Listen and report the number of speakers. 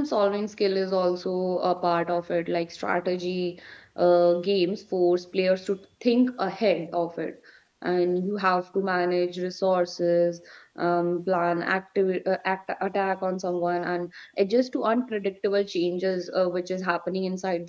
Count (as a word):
one